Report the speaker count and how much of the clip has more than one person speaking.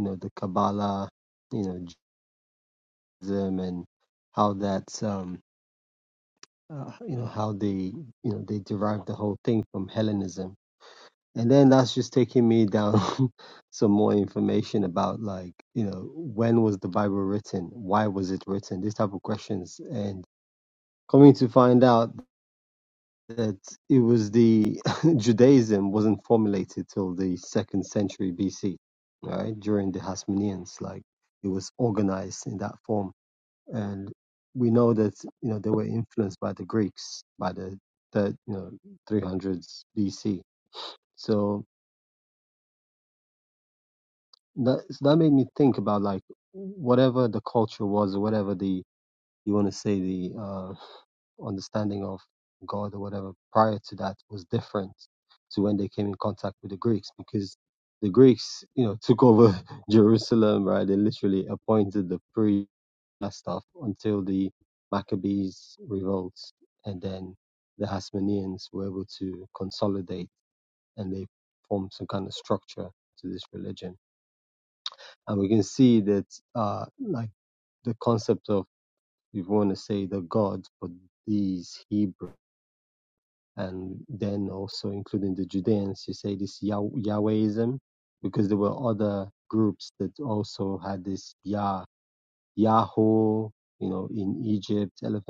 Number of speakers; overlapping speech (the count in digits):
1, no overlap